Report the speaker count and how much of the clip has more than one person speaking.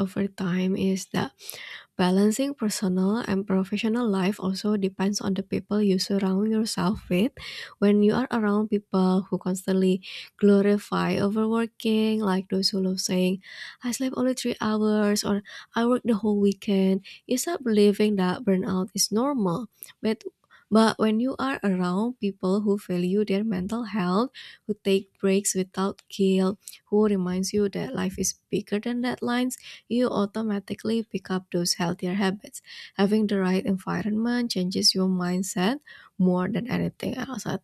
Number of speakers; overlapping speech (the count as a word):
one, no overlap